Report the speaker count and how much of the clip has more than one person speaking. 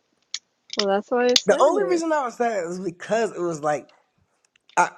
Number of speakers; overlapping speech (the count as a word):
two, about 11%